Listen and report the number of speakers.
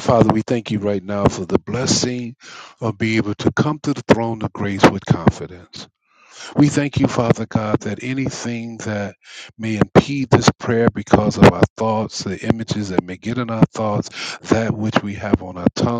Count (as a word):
one